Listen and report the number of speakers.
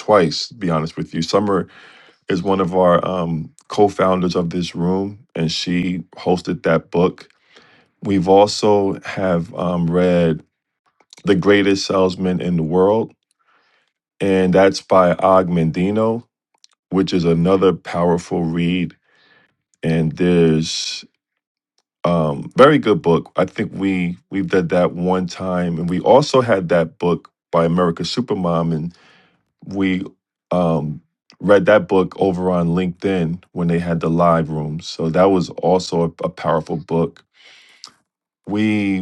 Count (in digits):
1